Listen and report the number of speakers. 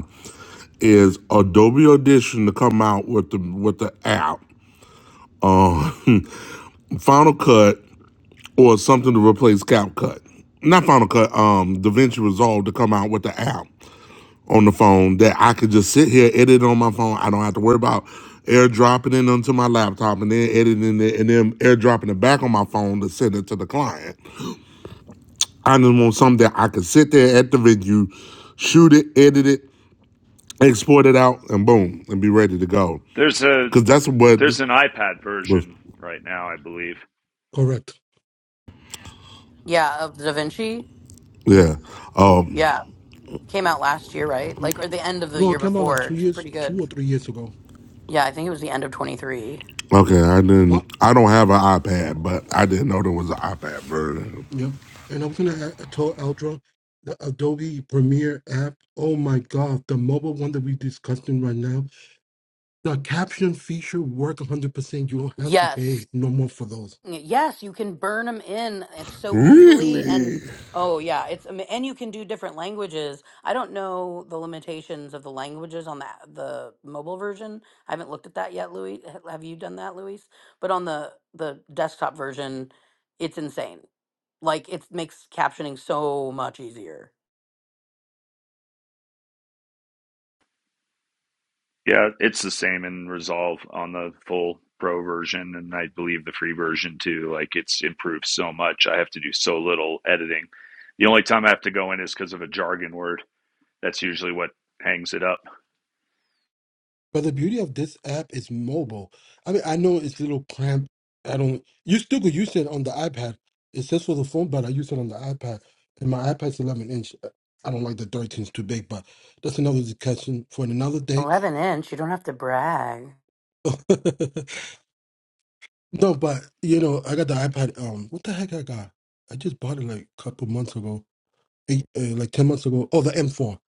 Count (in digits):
4